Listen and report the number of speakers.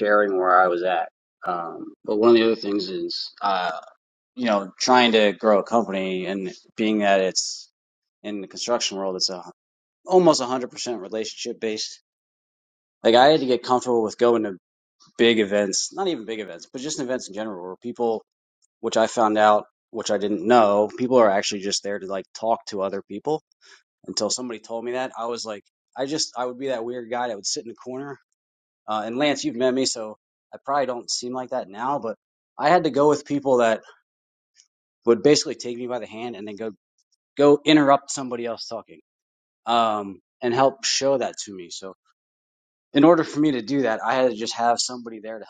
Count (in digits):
1